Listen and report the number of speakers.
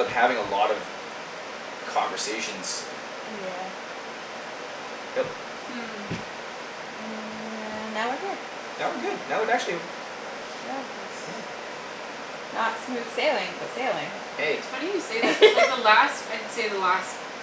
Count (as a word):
three